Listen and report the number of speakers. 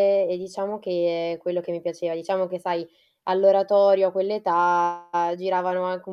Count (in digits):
1